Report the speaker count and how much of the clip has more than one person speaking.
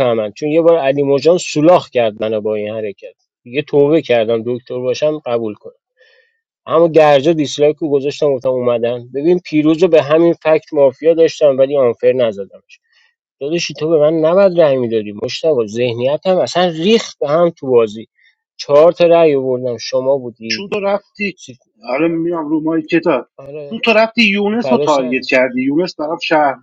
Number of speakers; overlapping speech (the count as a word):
two, about 3%